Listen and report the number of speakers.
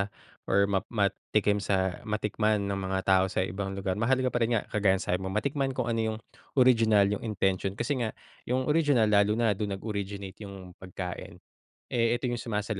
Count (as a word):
one